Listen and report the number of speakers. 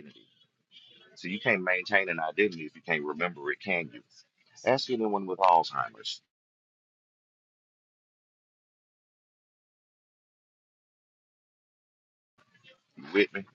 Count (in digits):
1